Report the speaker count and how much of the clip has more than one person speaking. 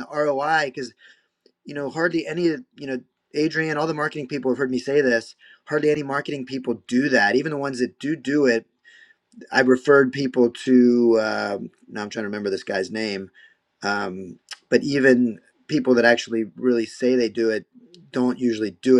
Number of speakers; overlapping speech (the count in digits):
1, no overlap